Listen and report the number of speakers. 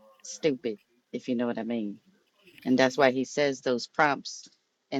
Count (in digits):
1